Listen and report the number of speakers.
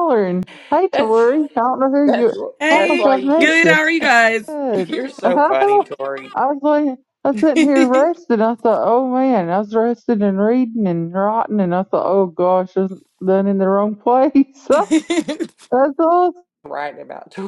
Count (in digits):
3